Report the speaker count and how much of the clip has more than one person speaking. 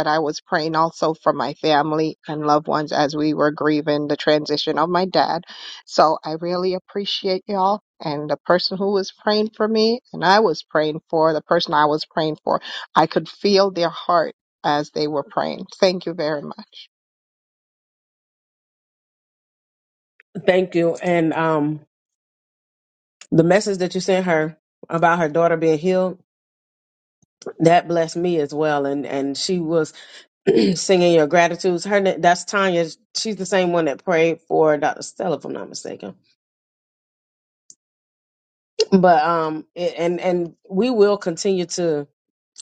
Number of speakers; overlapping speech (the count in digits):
2, no overlap